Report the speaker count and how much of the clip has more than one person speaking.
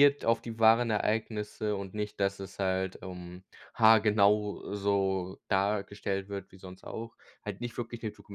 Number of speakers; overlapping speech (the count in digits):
1, no overlap